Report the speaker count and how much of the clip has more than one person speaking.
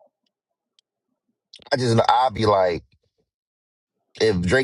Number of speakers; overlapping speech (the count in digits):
1, no overlap